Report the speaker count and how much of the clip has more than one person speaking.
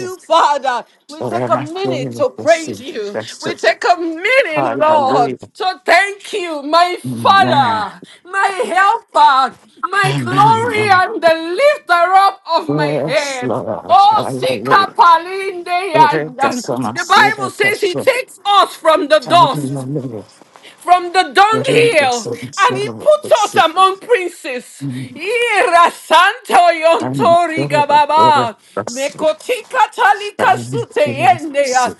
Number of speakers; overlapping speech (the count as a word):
two, about 42%